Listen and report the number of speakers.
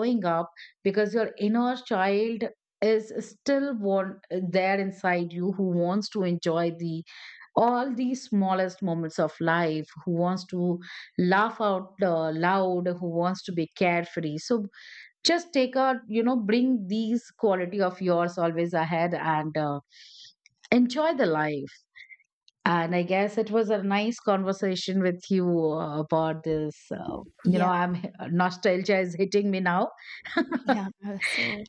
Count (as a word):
two